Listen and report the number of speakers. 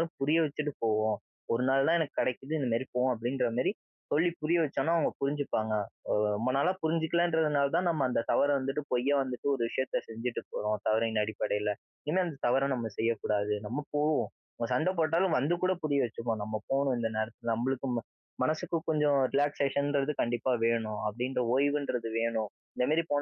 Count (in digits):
1